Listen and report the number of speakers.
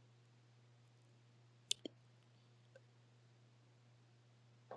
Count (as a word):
zero